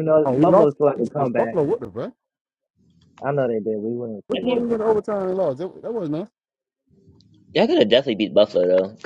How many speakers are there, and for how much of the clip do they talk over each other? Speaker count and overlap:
3, about 13%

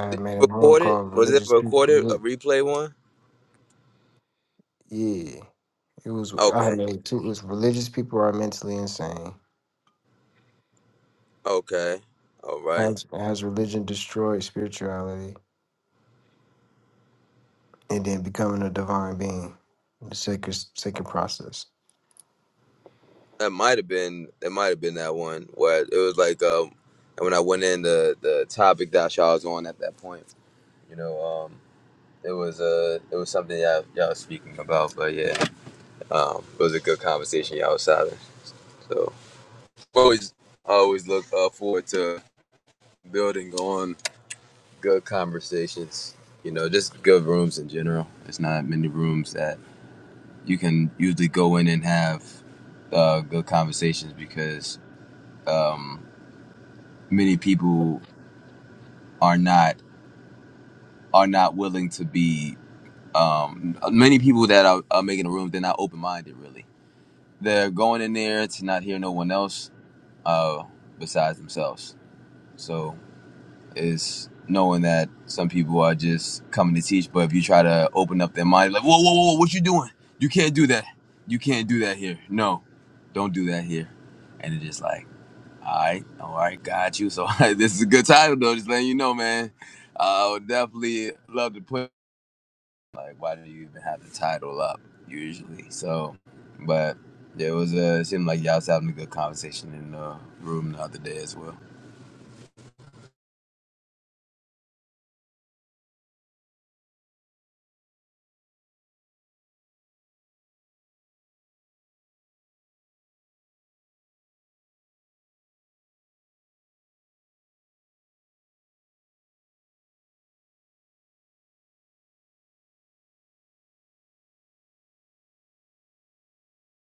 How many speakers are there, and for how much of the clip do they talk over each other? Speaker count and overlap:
2, about 2%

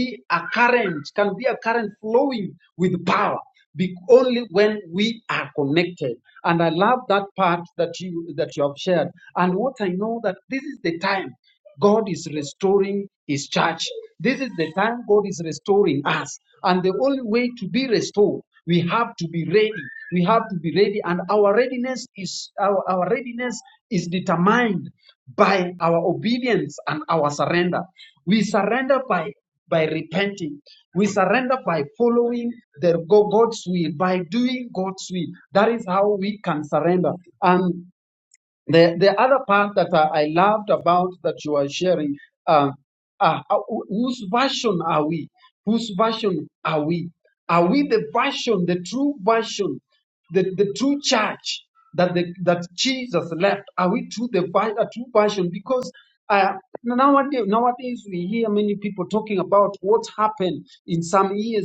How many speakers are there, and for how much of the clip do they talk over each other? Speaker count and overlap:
1, no overlap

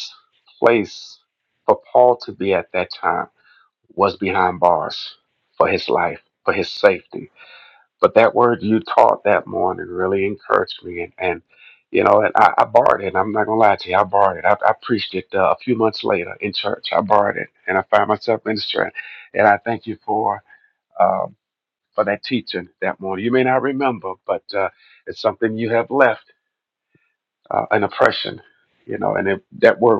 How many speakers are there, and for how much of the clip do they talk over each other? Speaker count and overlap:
1, no overlap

